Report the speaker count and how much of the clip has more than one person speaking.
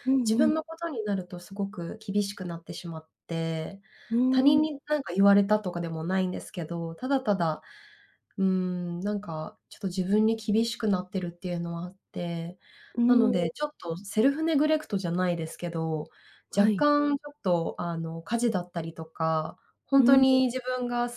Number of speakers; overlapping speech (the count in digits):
2, about 8%